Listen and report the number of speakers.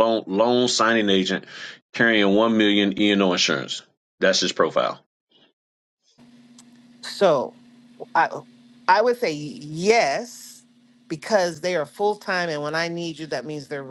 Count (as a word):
two